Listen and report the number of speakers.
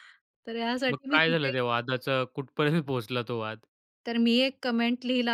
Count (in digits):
2